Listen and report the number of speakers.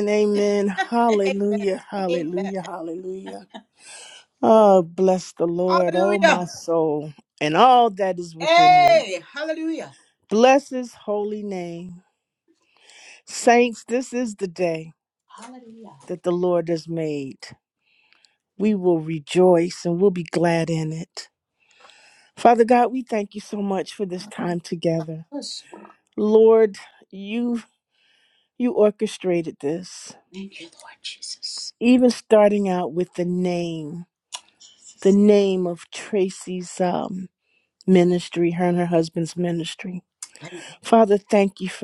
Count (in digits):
2